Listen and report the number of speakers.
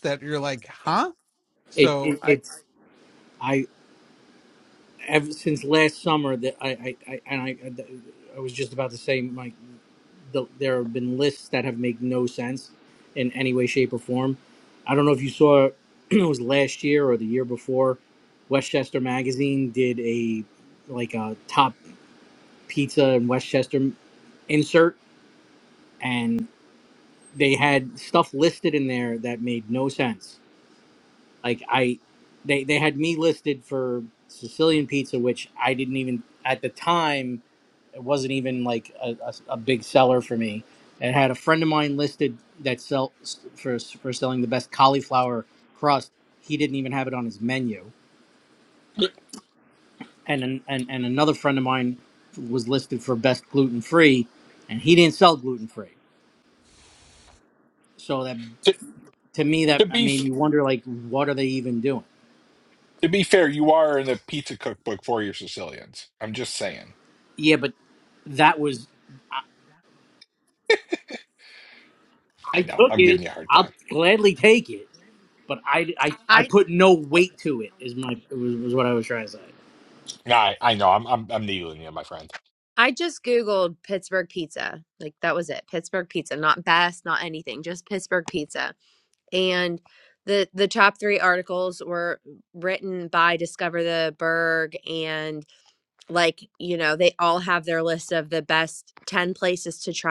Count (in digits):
4